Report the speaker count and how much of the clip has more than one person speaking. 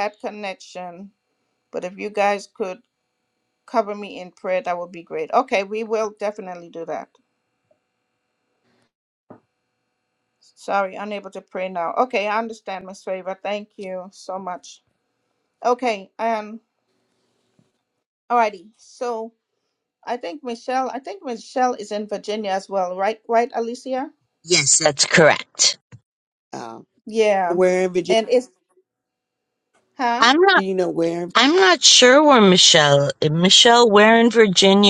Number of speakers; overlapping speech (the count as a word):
three, about 1%